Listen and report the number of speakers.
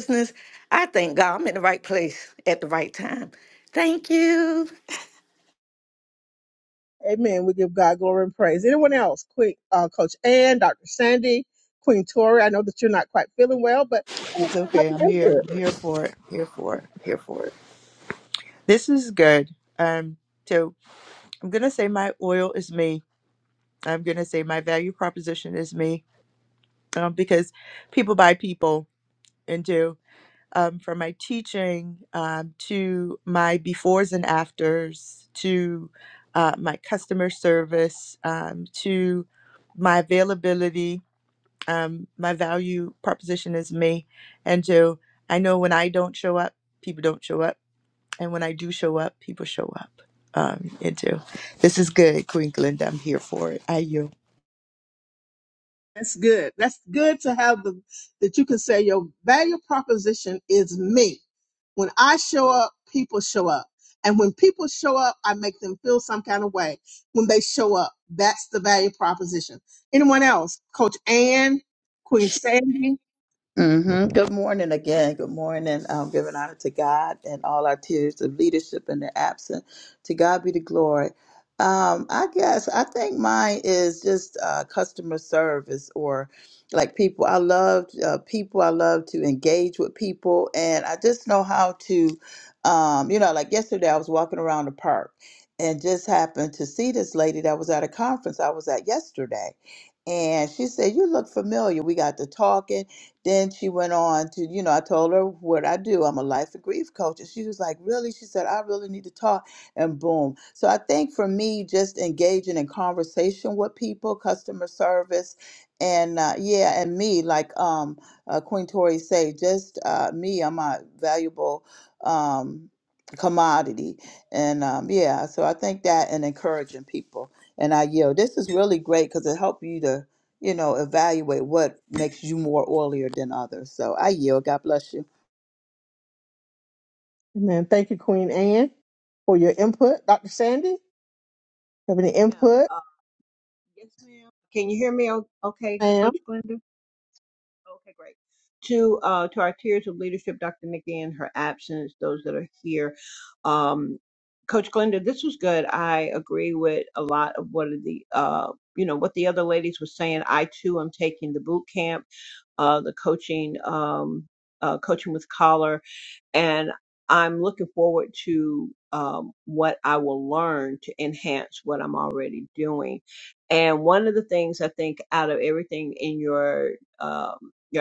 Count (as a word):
five